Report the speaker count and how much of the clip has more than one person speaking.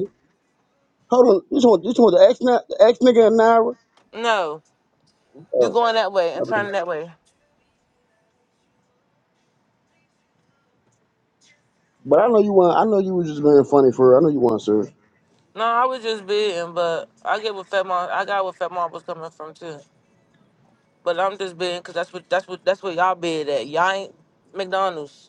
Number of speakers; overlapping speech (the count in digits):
2, about 2%